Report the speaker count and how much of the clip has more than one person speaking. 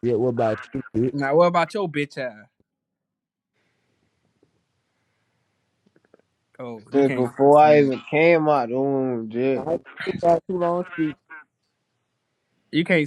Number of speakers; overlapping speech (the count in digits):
3, about 8%